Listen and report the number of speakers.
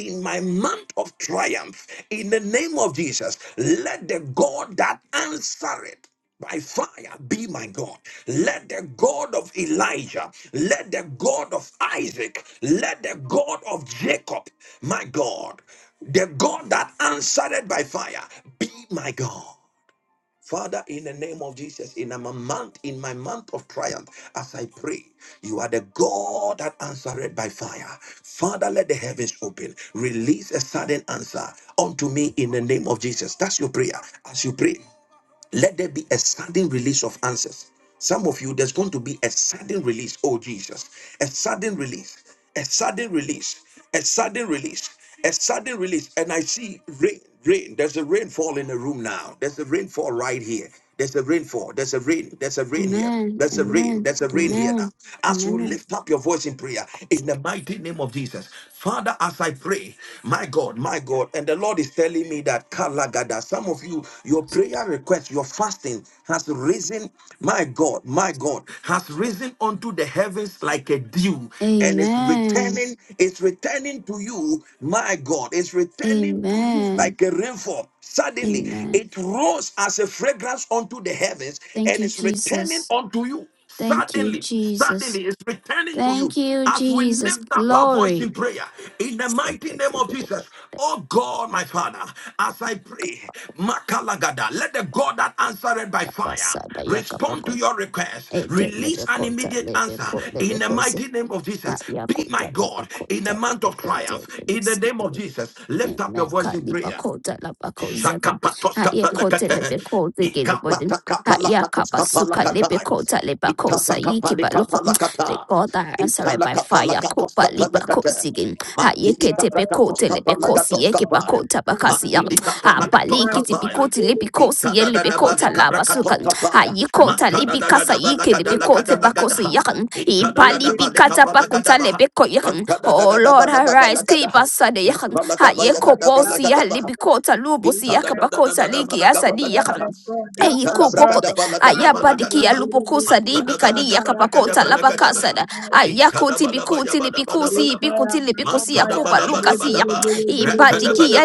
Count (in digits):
3